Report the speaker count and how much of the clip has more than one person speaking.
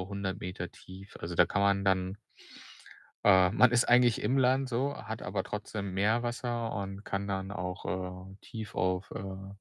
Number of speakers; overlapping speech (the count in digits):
1, no overlap